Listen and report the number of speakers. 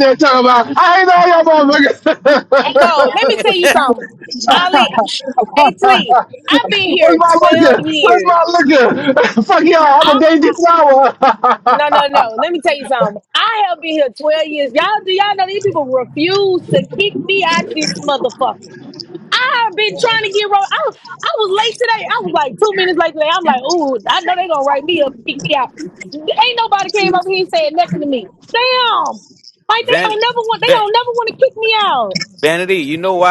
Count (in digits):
3